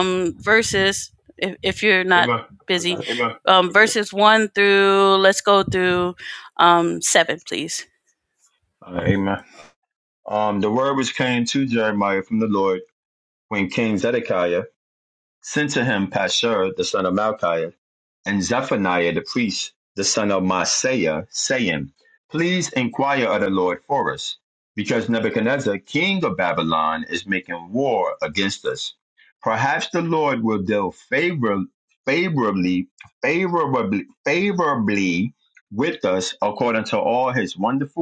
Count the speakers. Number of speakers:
2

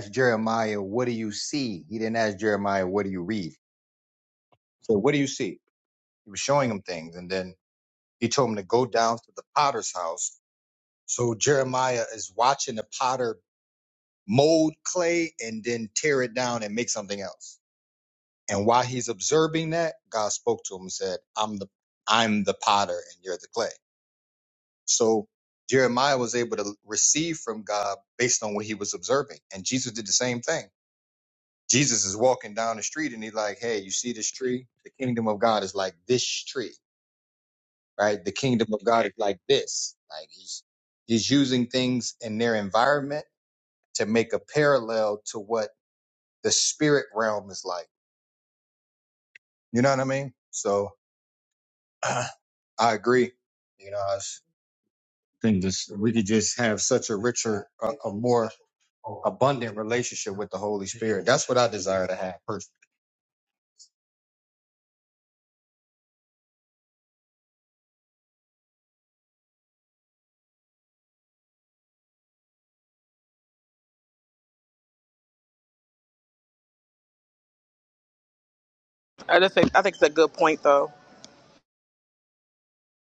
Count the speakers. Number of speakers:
2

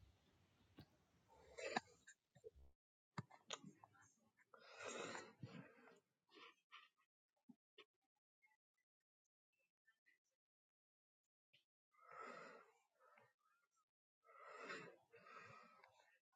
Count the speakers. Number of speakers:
0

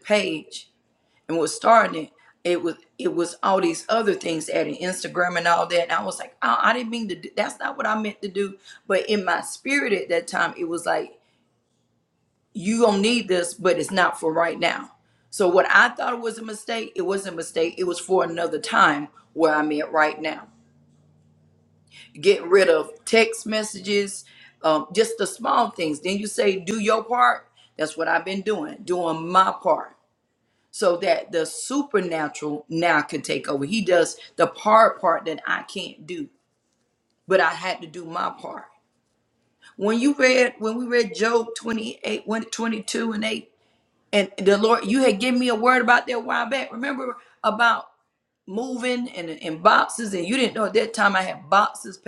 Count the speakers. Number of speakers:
1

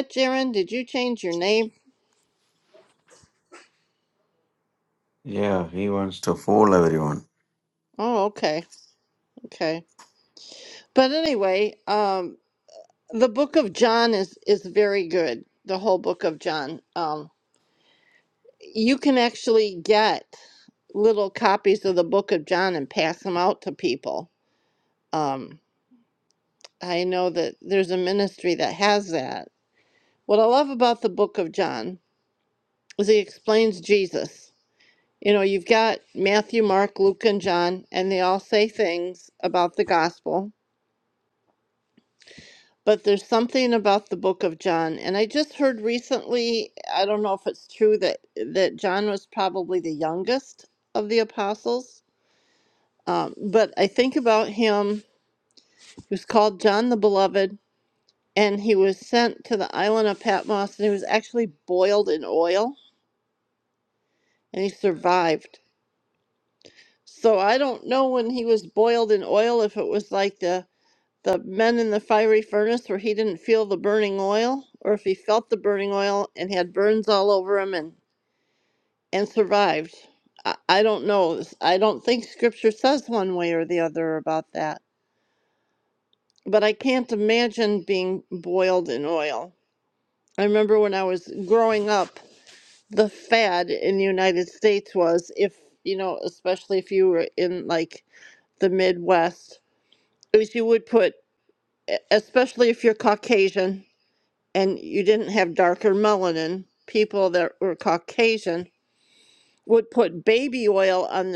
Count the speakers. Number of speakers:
2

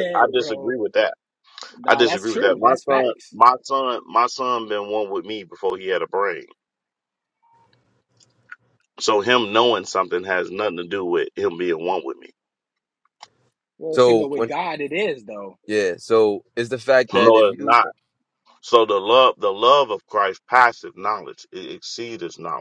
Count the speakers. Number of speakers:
3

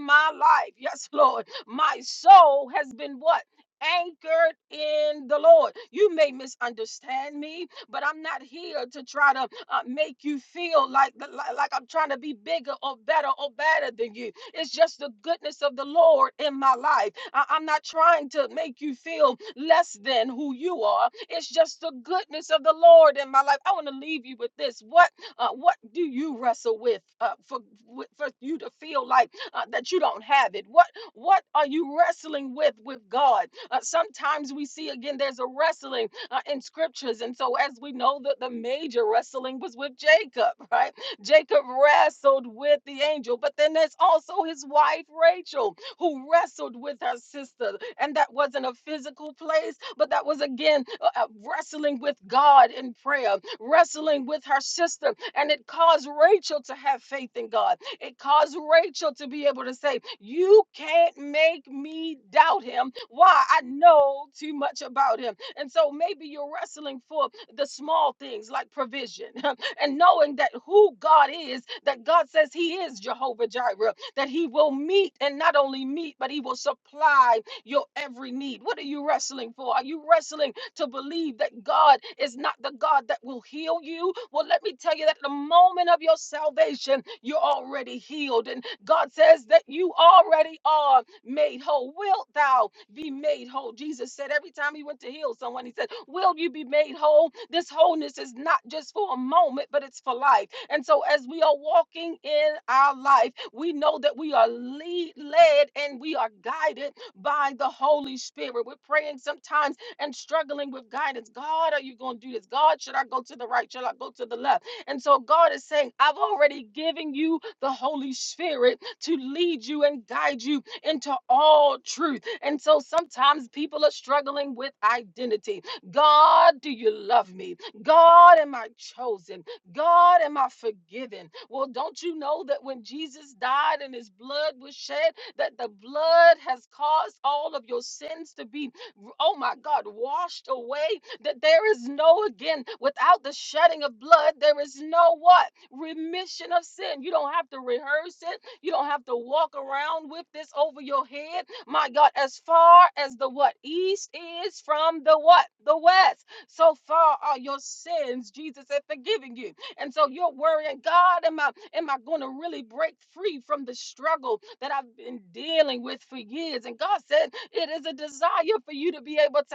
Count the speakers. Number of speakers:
1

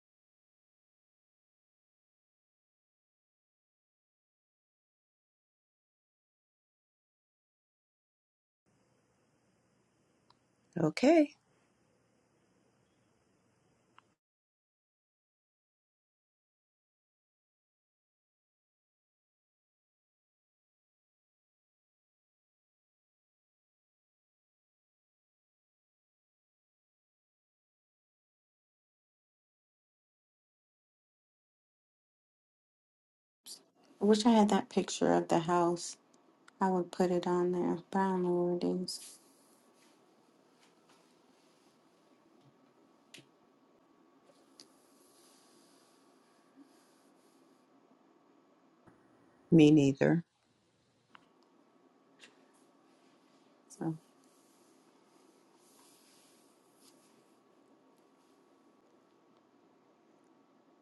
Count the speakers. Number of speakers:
2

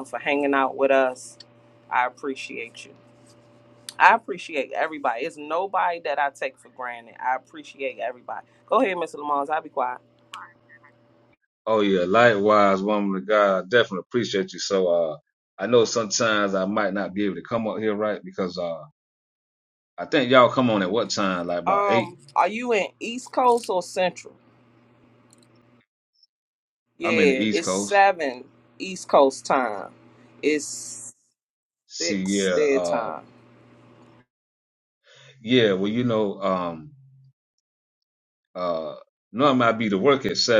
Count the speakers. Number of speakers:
2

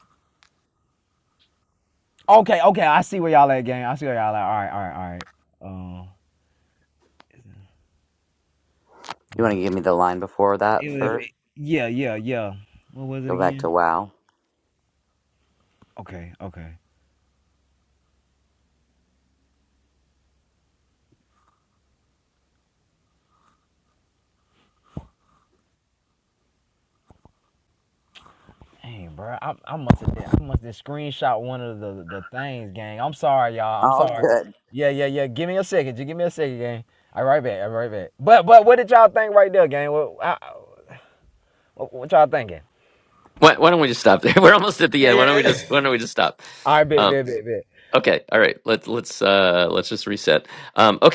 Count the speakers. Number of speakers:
3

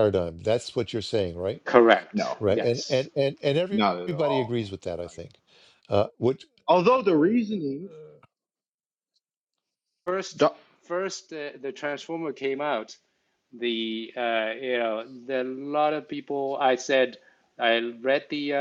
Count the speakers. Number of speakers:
3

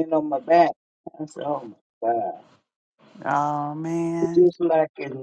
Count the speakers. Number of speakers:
2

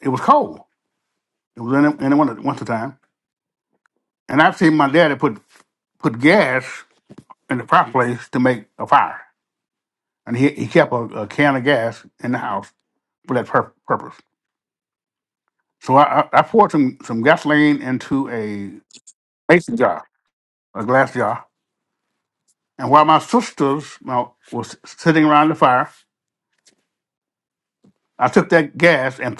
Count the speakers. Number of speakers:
1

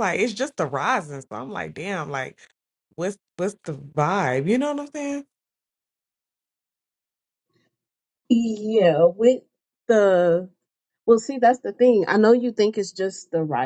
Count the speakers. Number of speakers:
2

